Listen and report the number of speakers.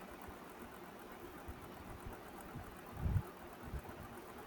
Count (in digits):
0